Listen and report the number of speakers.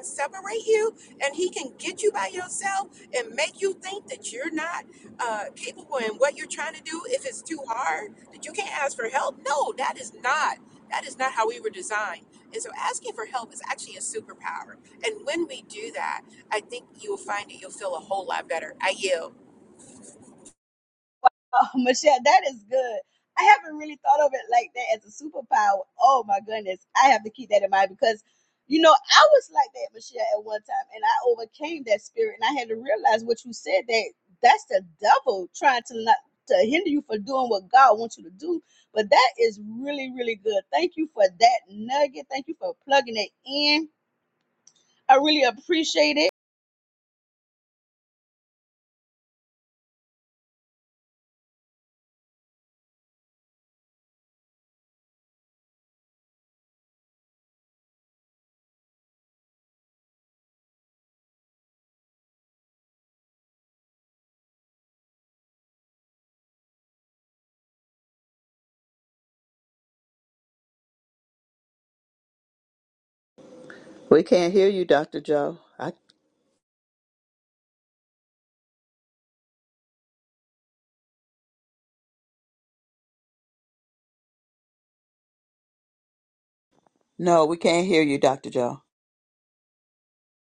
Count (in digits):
3